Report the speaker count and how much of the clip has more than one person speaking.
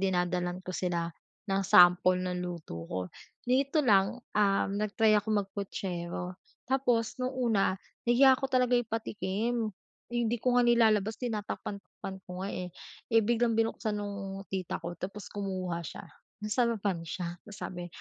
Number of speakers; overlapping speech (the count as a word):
one, no overlap